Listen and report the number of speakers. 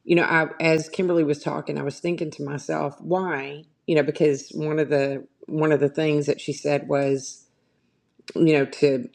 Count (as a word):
one